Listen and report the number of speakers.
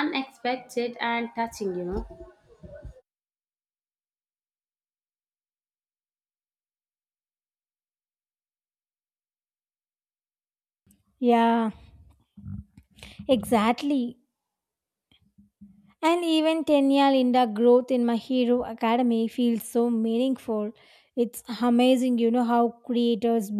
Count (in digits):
2